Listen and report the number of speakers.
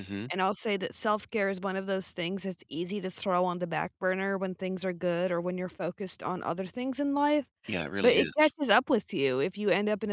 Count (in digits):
2